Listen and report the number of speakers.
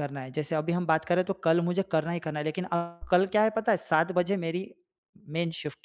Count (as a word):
one